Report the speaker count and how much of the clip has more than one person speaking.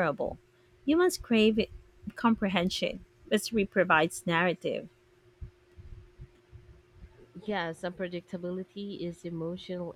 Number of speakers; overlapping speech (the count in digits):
2, no overlap